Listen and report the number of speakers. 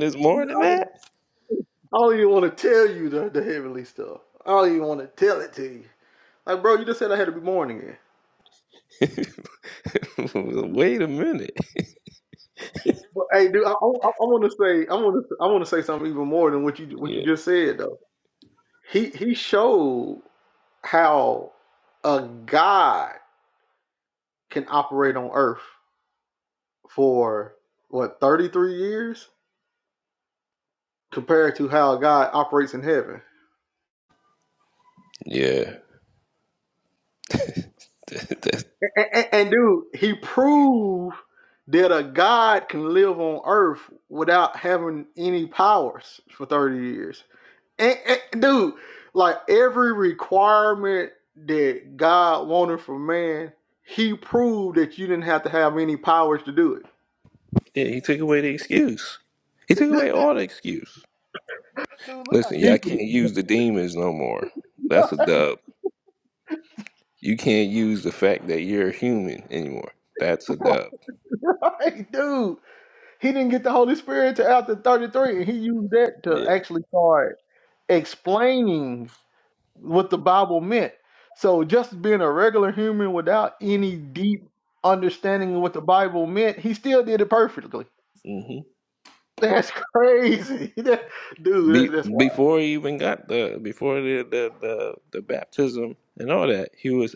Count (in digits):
2